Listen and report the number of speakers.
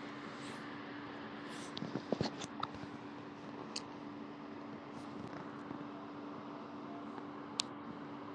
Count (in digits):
0